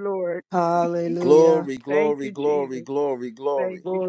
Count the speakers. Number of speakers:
3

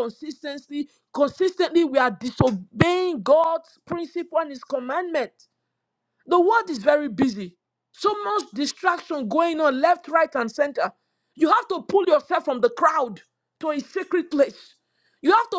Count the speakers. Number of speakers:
1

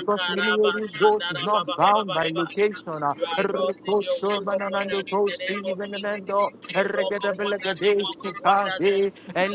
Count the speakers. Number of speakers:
2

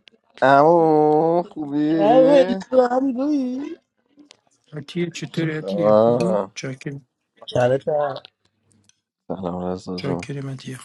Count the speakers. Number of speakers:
3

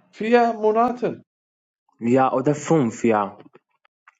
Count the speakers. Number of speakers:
2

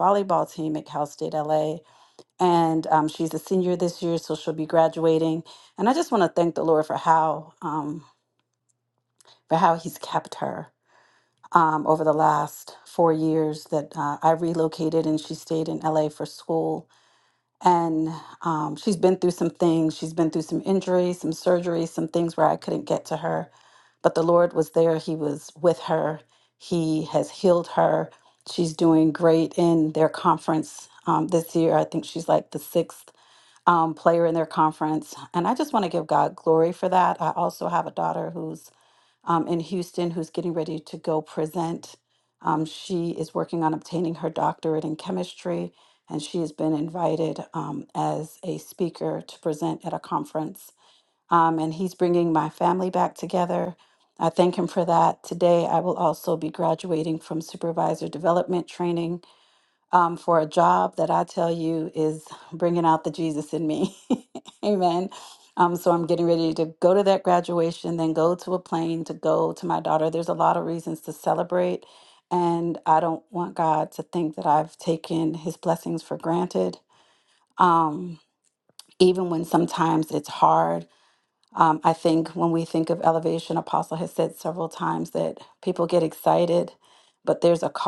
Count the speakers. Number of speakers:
1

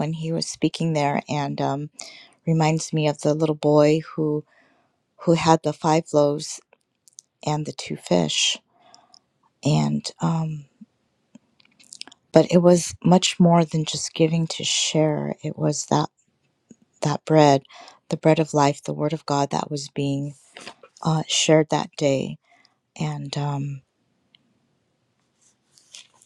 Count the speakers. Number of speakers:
1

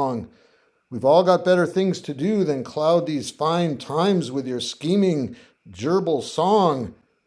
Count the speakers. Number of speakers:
1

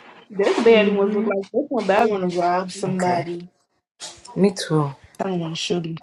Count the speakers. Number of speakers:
3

